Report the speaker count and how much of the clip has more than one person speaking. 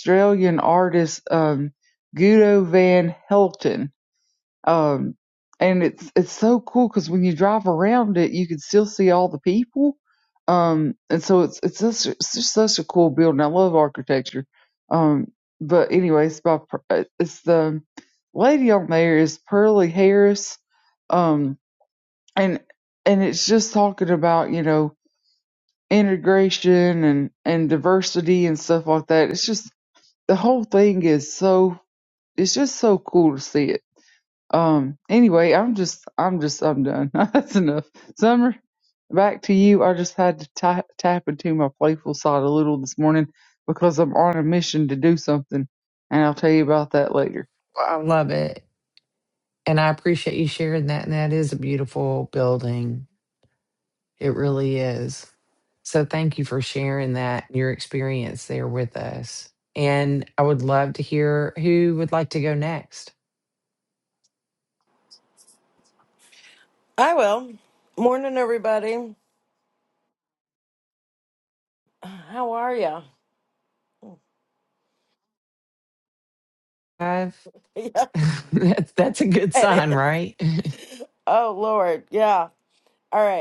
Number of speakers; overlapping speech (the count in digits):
3, about 1%